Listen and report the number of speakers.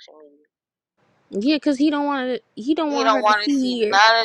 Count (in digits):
2